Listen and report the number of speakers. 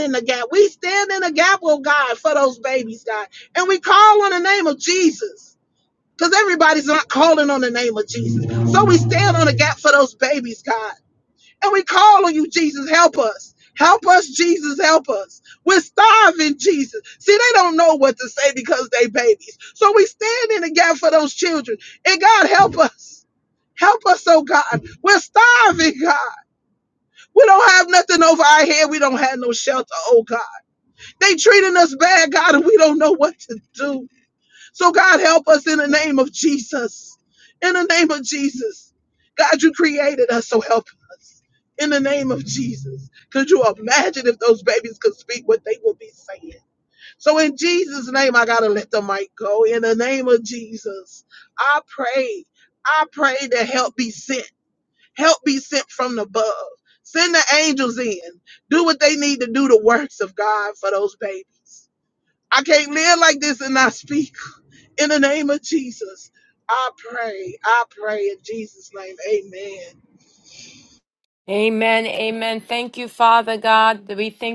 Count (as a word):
two